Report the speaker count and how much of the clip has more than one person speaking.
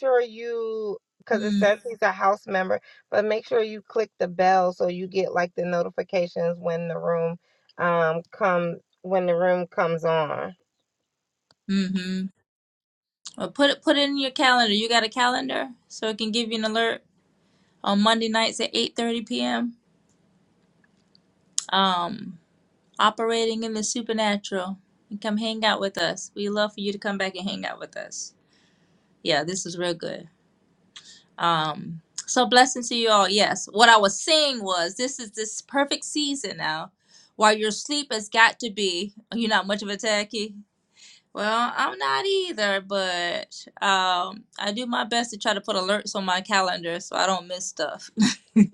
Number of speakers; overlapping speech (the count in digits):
2, no overlap